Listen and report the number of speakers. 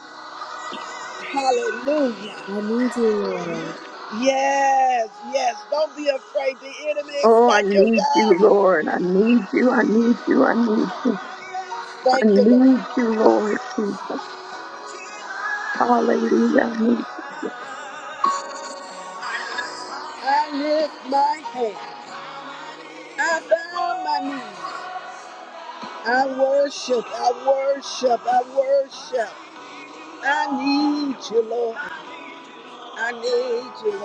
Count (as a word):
three